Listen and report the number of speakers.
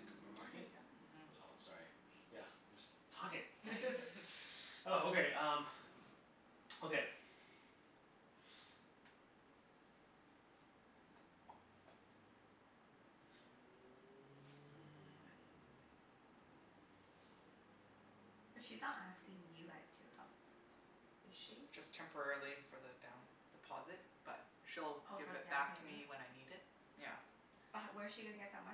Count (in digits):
3